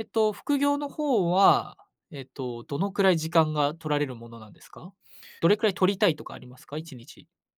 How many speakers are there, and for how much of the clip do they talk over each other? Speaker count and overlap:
1, no overlap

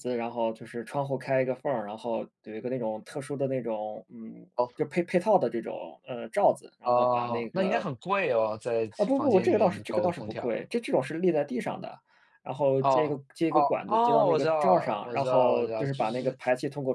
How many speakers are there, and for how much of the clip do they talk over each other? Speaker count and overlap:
2, about 34%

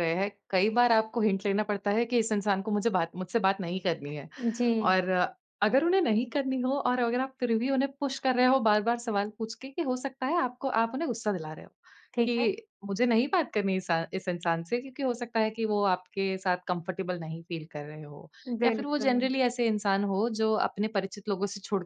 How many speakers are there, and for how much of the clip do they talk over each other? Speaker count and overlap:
2, about 4%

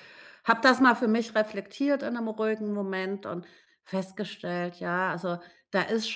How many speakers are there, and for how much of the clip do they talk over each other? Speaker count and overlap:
1, no overlap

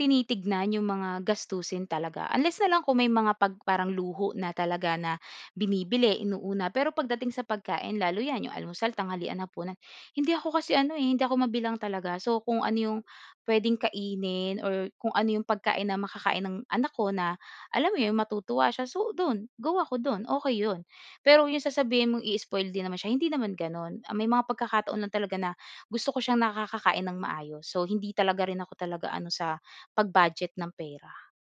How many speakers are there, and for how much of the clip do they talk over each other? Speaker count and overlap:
1, no overlap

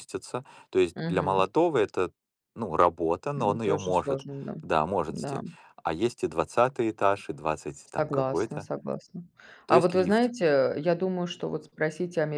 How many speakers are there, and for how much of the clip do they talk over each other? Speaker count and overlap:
2, about 22%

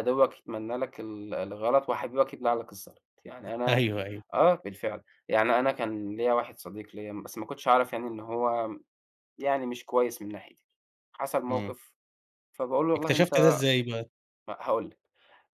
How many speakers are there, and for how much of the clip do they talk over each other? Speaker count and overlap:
2, about 5%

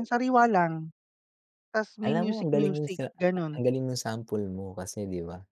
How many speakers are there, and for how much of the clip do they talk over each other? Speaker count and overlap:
2, about 21%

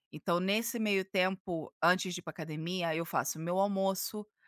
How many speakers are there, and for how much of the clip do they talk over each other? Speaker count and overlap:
1, no overlap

